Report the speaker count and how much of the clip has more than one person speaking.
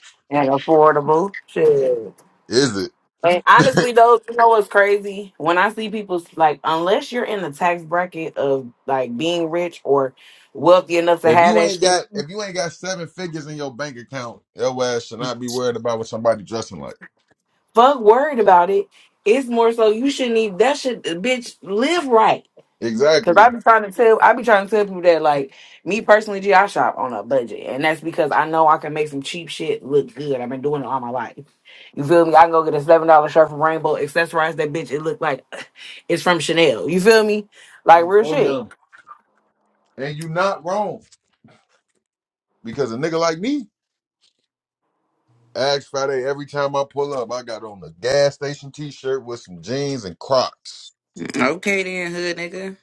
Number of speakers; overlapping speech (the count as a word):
three, about 3%